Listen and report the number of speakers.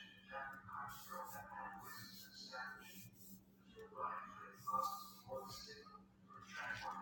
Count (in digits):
0